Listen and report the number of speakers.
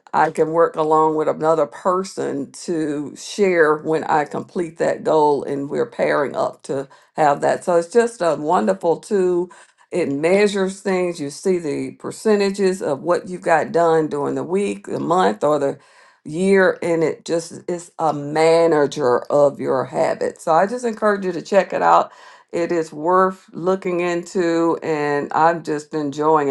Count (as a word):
one